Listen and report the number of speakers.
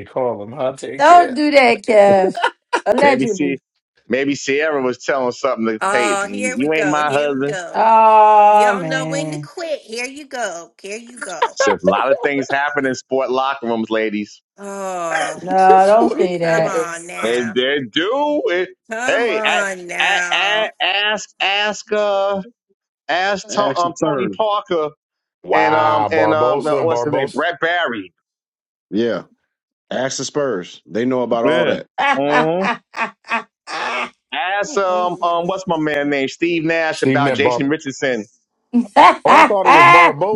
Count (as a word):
five